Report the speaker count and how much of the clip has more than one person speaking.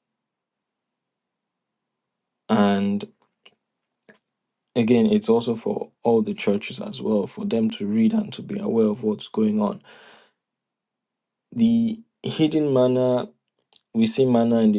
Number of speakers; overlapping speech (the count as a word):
one, no overlap